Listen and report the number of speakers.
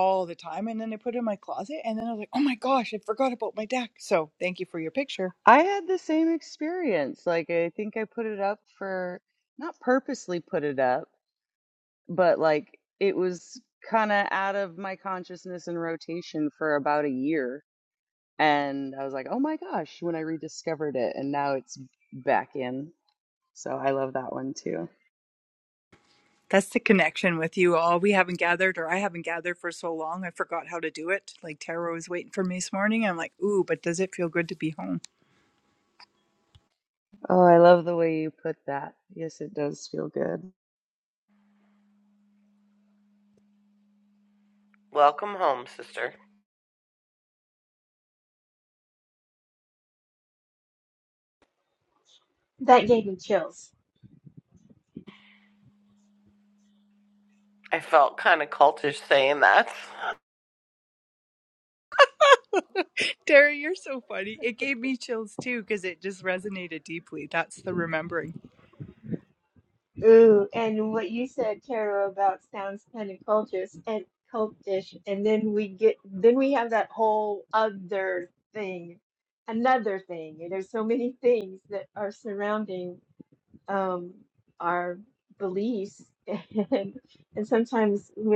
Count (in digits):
4